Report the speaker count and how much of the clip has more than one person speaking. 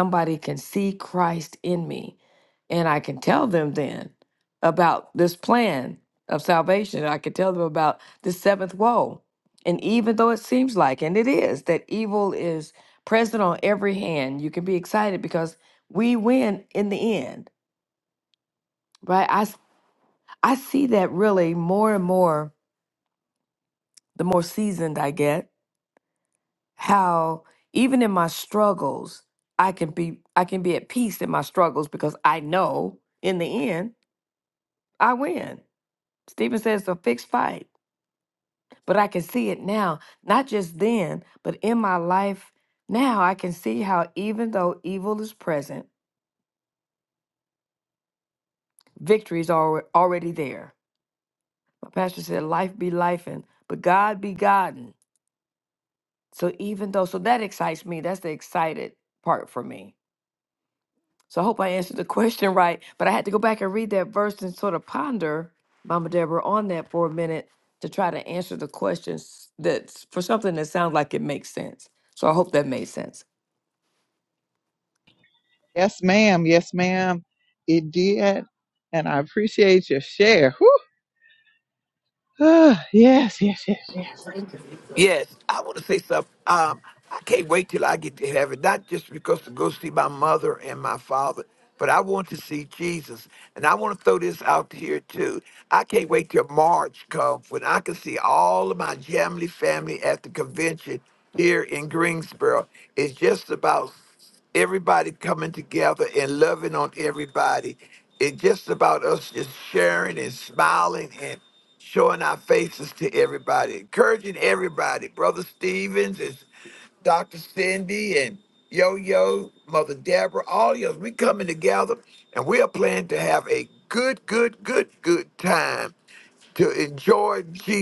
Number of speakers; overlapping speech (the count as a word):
three, no overlap